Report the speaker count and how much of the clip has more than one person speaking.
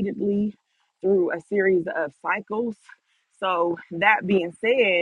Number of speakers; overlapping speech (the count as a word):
one, no overlap